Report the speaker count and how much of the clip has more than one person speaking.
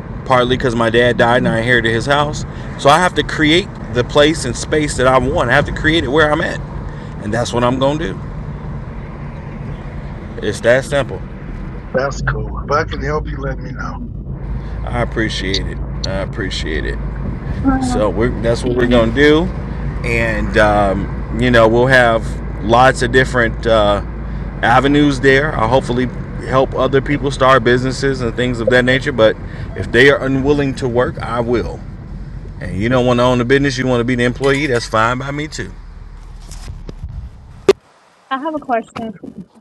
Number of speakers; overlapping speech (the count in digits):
3, about 1%